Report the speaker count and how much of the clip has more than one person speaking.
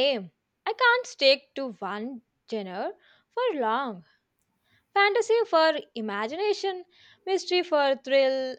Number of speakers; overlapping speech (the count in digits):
1, no overlap